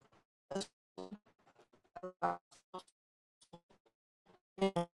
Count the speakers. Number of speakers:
0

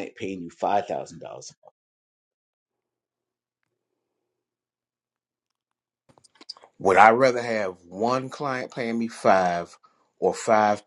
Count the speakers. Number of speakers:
2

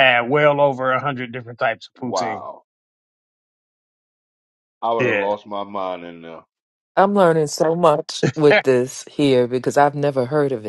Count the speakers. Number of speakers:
3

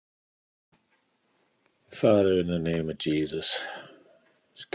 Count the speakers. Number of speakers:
1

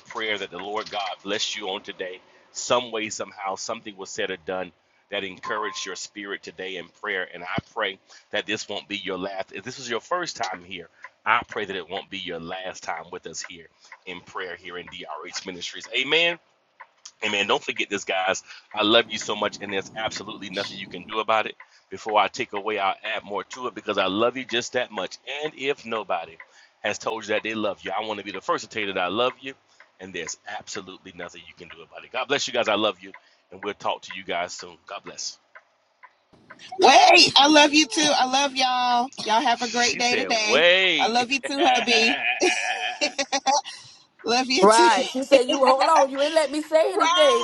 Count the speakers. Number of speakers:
3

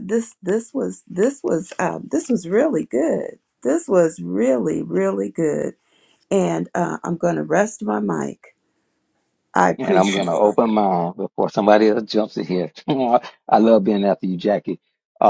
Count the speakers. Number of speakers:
2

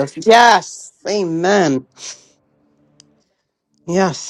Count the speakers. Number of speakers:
1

